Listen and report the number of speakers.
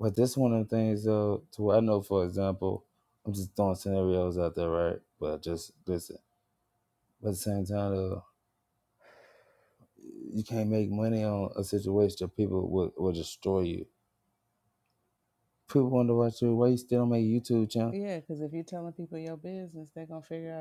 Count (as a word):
two